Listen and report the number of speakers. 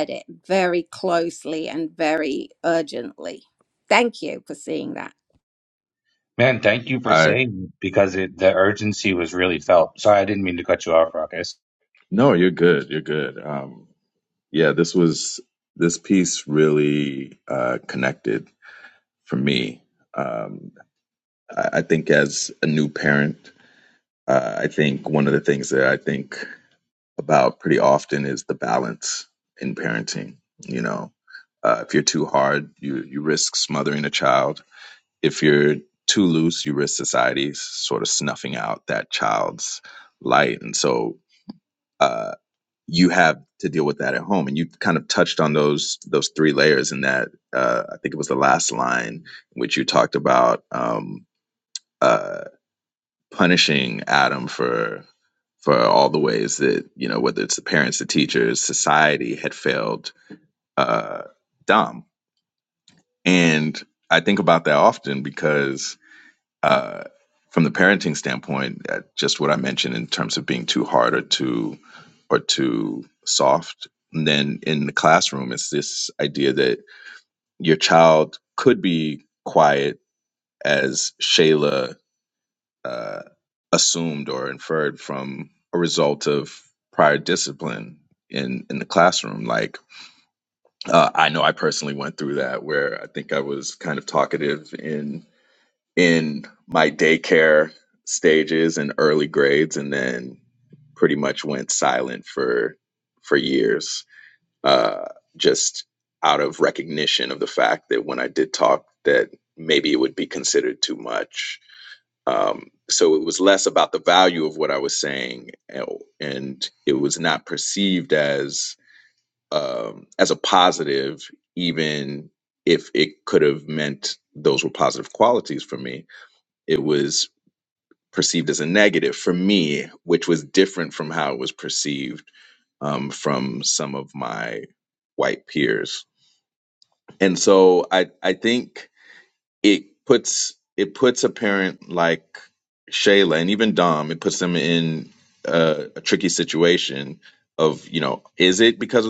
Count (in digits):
3